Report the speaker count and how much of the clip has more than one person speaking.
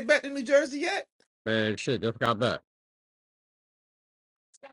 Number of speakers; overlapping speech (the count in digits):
2, no overlap